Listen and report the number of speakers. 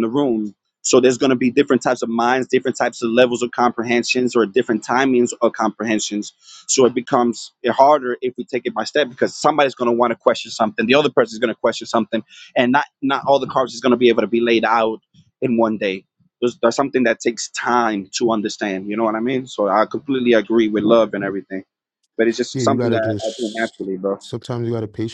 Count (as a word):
two